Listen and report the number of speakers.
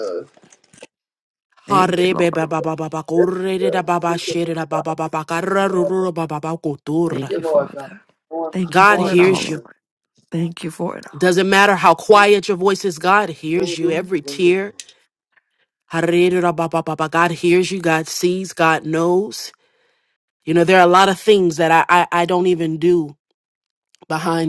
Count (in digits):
3